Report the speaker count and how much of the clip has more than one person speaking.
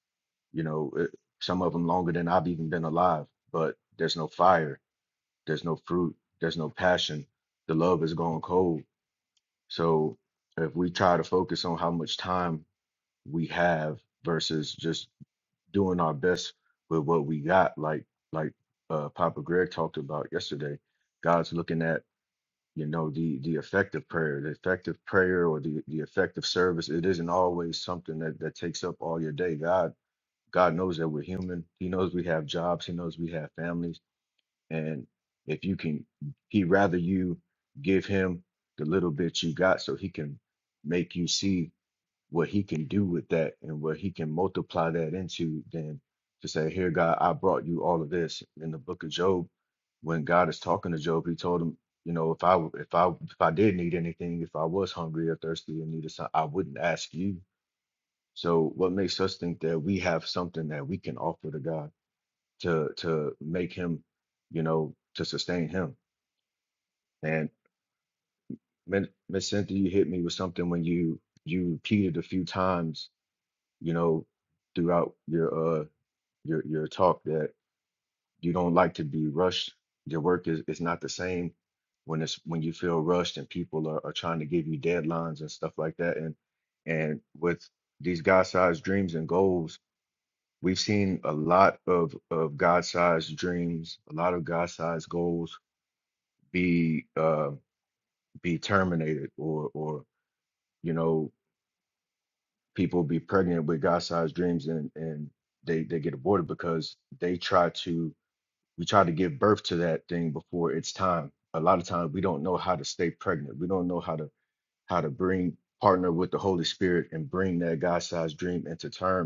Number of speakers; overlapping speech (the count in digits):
1, no overlap